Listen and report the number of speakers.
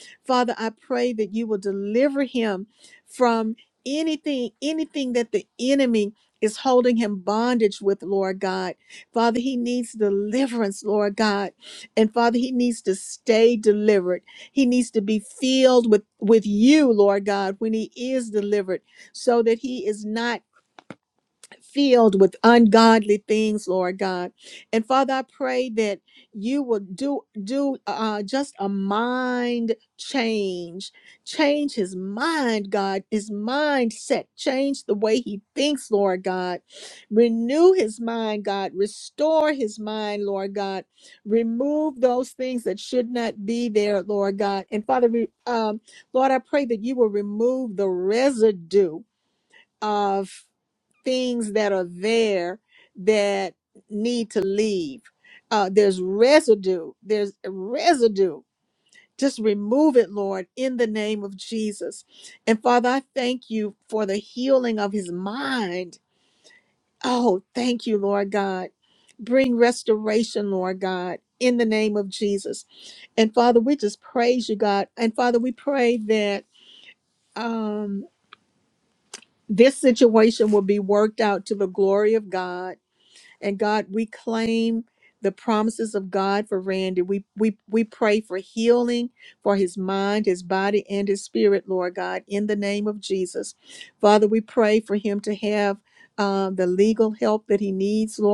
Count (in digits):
1